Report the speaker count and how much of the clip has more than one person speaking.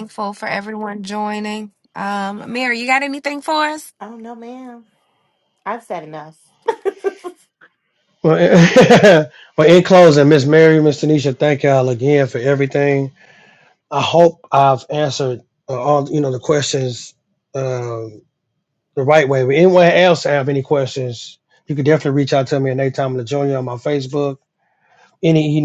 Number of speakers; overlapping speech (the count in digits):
3, no overlap